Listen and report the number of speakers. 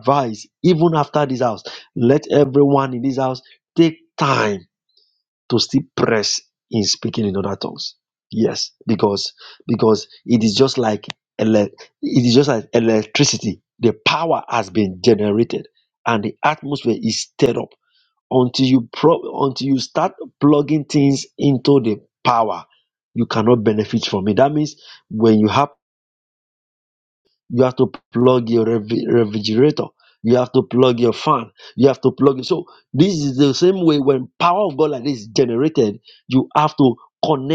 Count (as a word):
one